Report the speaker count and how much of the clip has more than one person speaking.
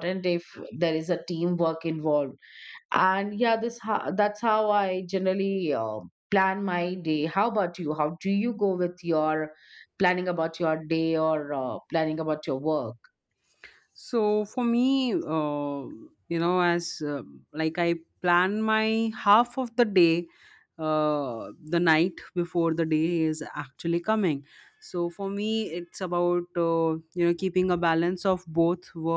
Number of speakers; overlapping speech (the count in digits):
2, no overlap